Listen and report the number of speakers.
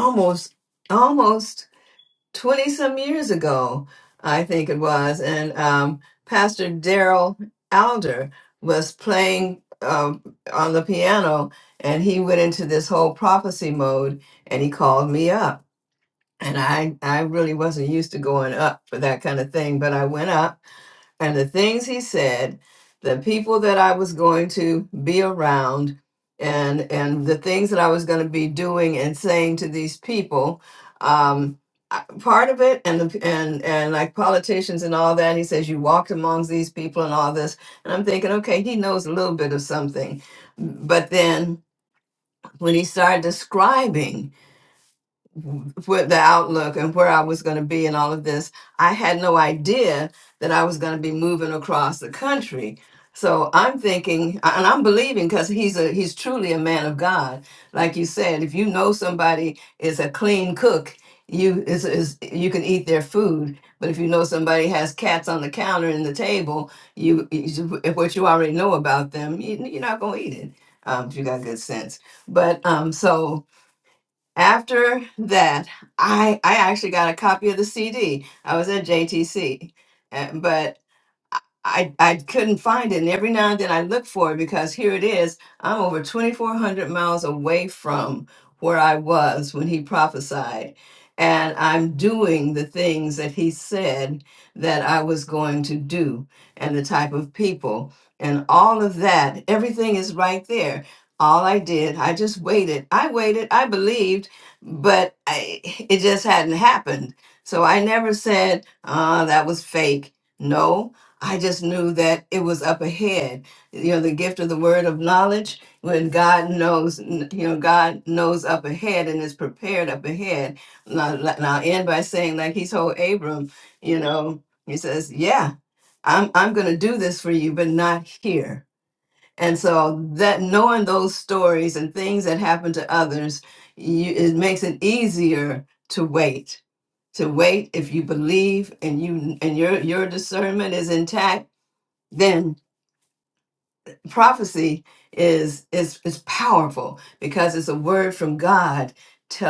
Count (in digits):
1